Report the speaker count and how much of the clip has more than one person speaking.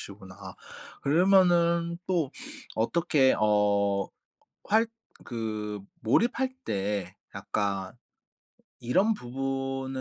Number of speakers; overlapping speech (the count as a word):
one, no overlap